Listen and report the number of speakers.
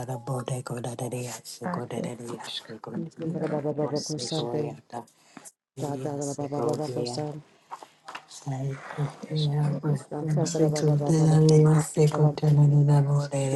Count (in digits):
3